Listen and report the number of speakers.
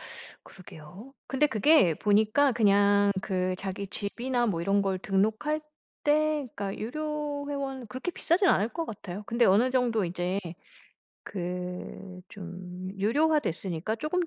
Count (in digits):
1